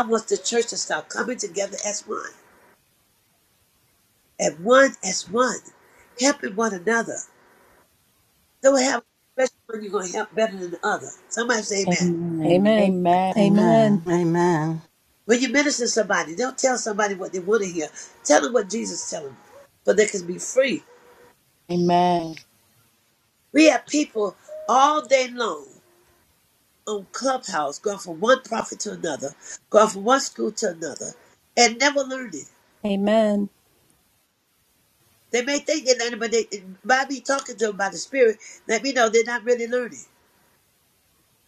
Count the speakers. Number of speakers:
4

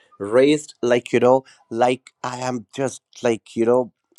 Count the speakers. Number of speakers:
1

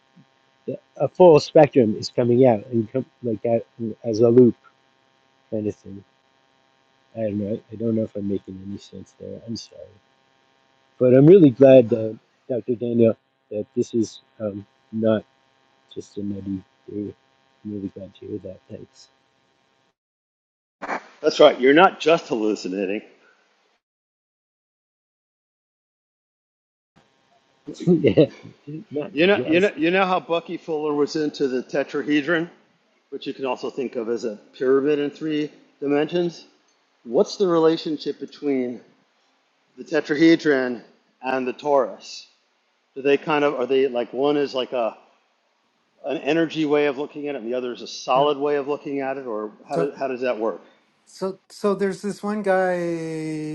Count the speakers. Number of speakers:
3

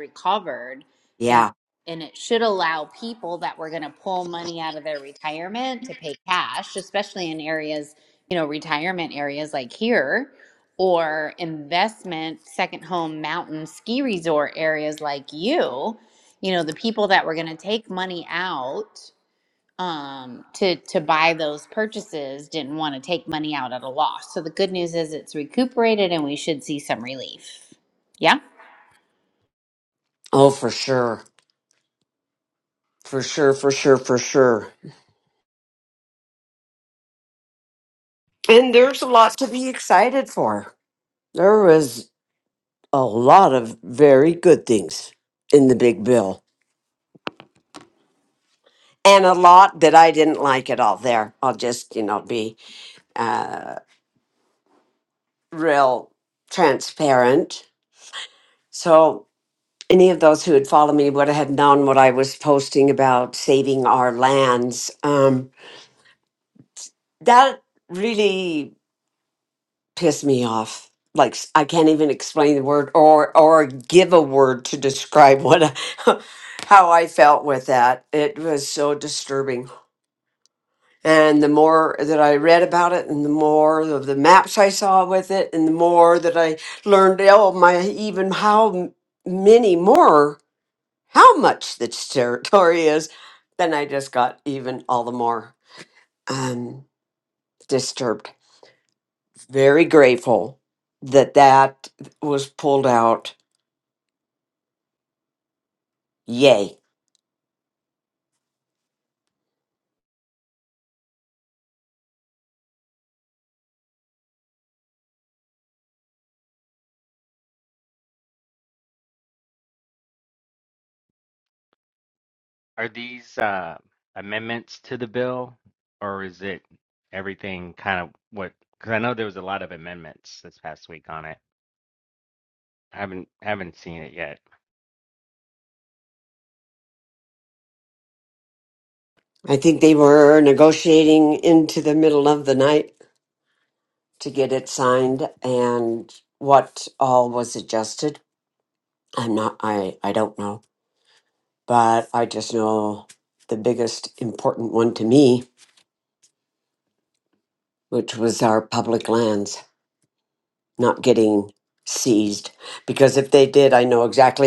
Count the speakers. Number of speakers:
3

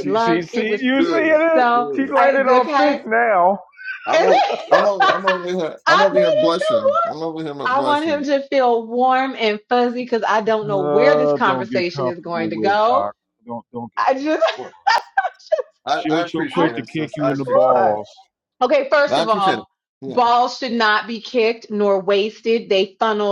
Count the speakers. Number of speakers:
3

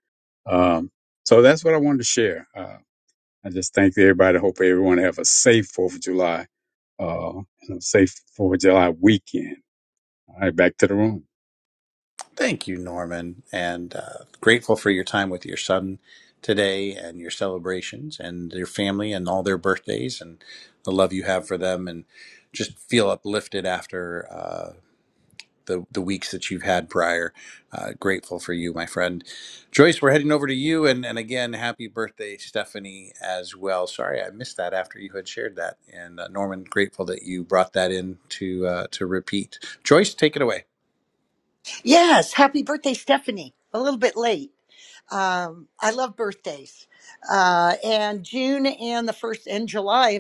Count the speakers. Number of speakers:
3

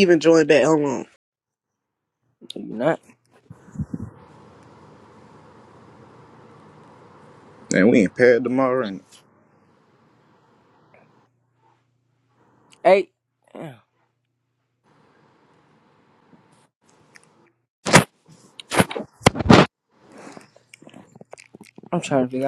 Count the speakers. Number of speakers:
3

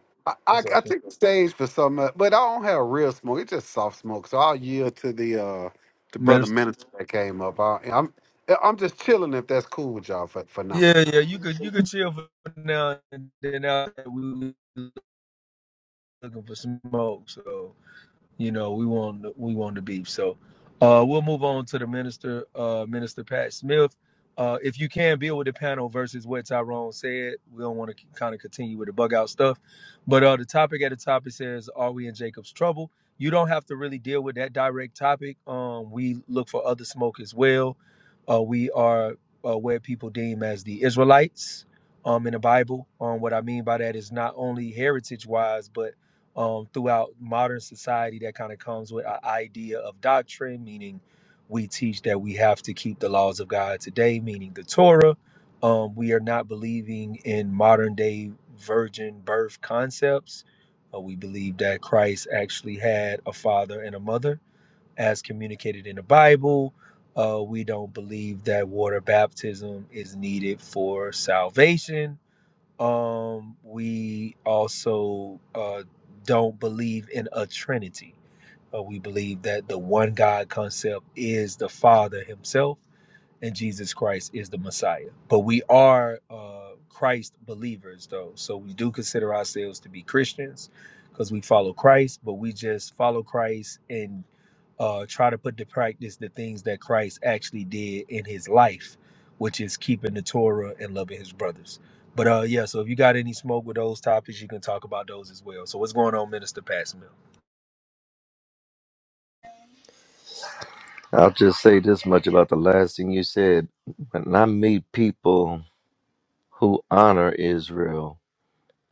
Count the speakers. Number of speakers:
3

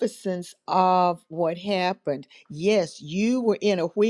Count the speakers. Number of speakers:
1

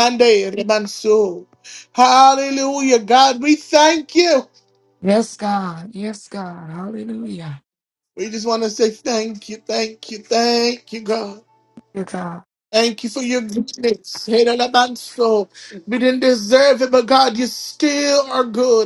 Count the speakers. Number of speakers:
2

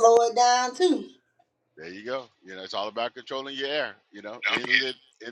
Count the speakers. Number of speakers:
2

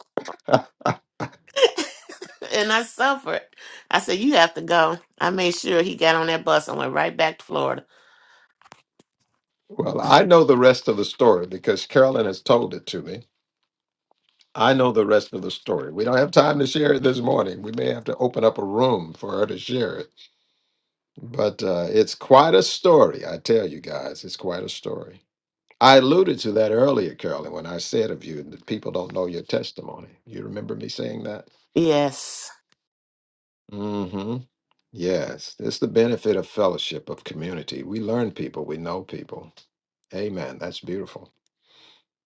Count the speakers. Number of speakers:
2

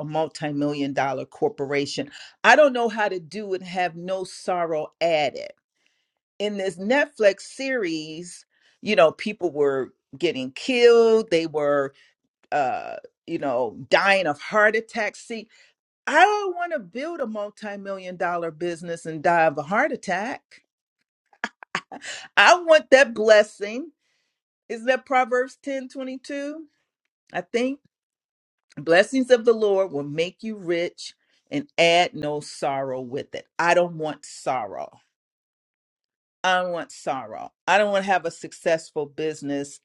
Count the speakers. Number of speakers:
1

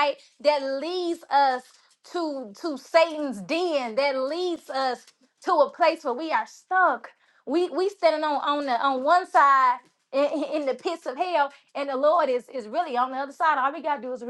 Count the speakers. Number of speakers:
1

